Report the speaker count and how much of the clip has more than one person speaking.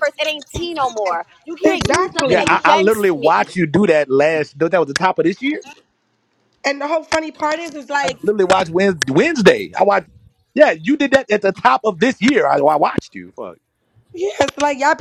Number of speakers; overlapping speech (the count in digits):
3, about 12%